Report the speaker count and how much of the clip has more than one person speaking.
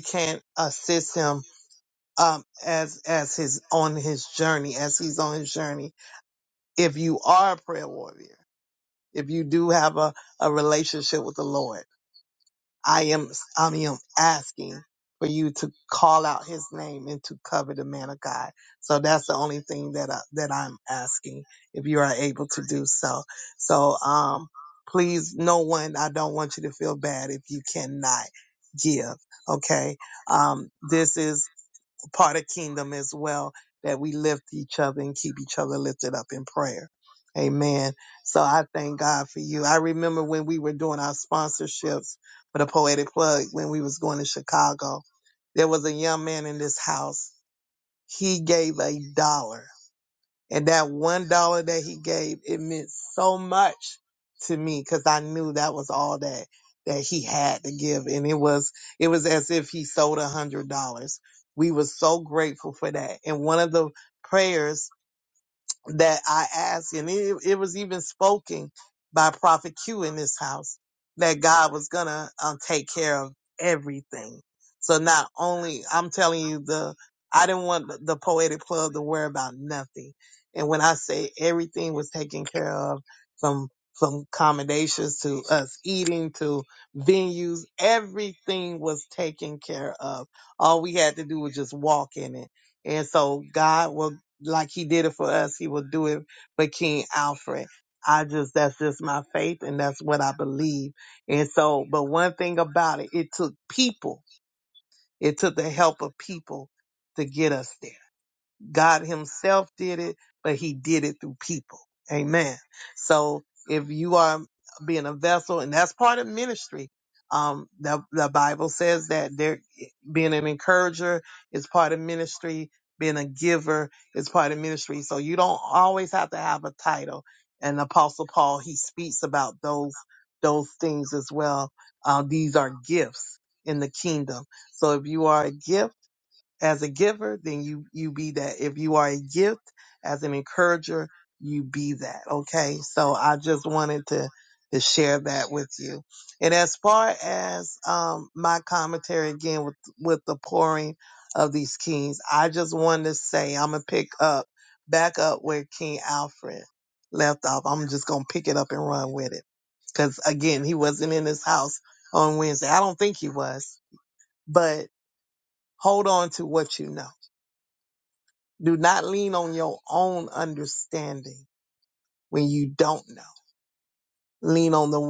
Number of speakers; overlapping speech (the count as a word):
one, no overlap